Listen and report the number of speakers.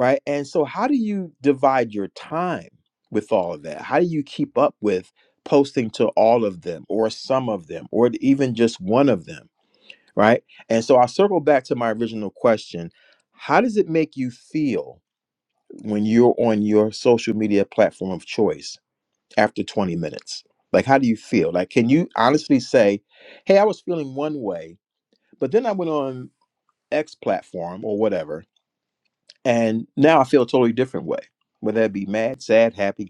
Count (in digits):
1